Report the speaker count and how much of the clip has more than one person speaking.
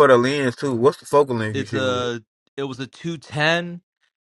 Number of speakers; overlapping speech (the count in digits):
2, about 13%